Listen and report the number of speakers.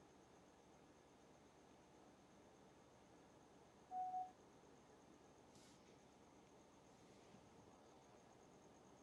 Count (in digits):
0